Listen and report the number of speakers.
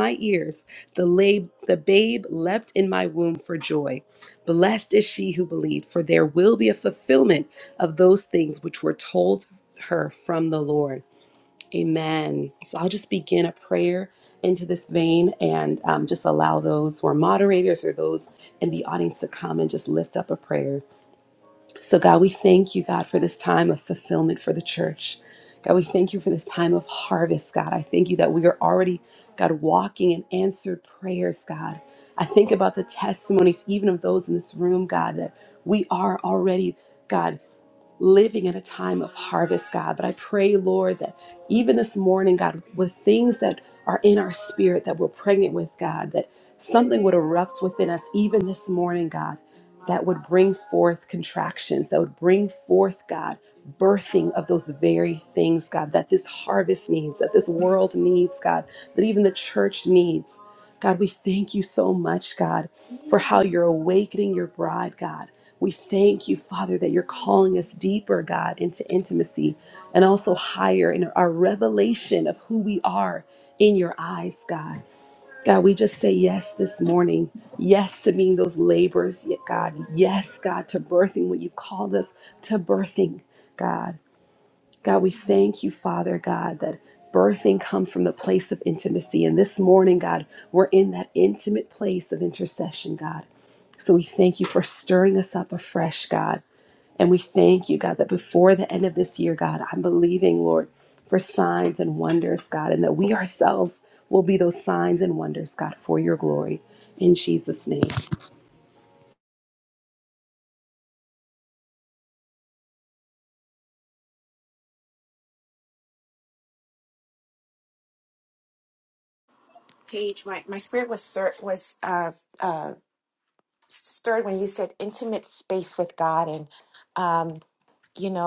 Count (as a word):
two